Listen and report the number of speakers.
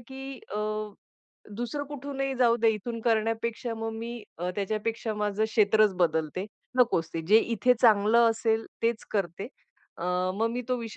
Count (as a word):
one